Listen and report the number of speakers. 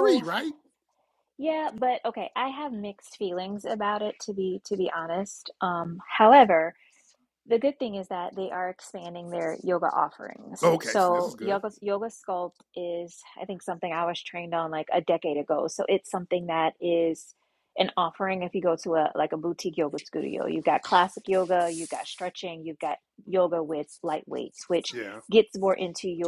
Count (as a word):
two